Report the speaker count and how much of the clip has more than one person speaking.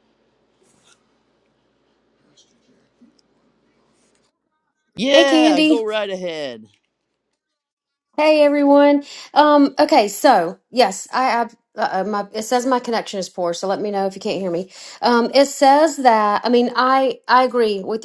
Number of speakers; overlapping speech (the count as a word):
two, about 4%